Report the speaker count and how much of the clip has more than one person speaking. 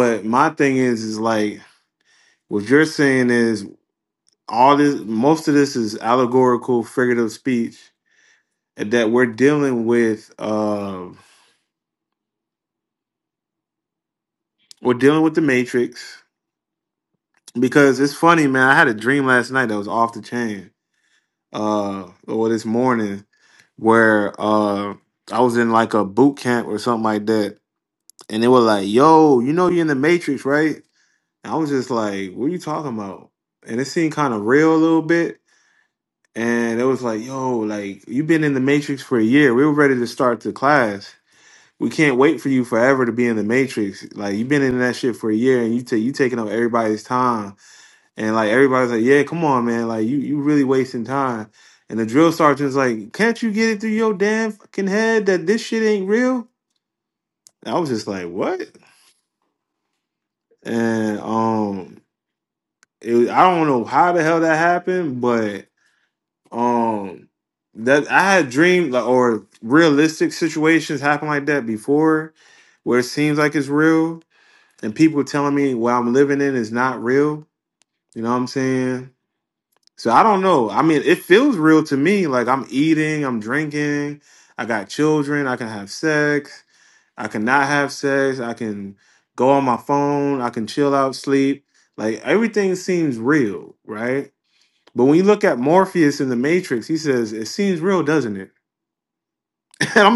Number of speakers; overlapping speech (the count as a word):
one, no overlap